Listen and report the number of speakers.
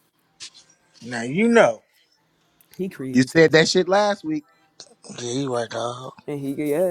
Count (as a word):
three